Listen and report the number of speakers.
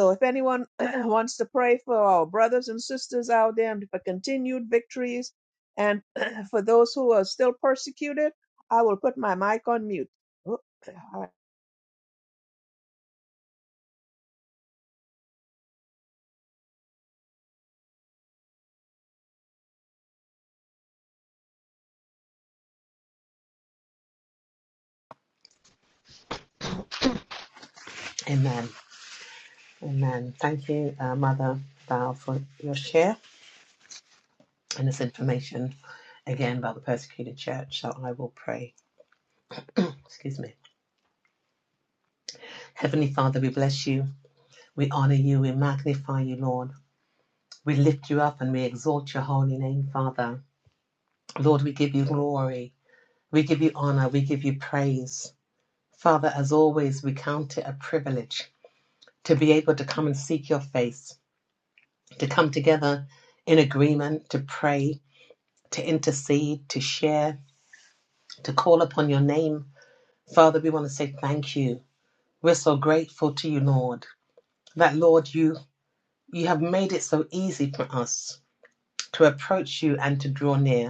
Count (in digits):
2